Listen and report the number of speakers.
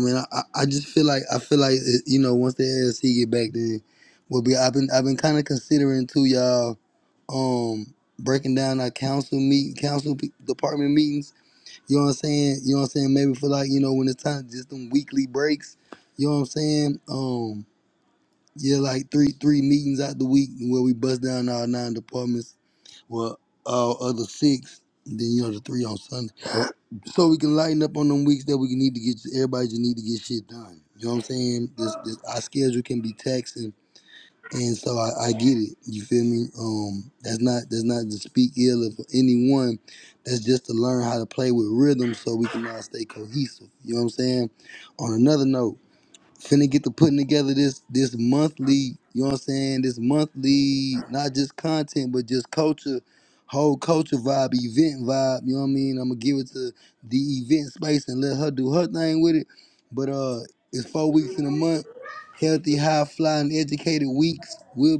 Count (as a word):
one